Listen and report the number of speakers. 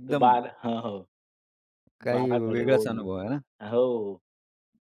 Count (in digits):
2